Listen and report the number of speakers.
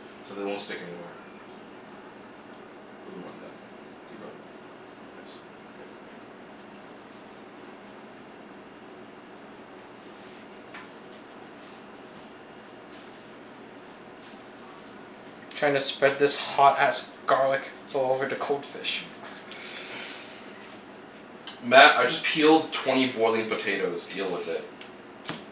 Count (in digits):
2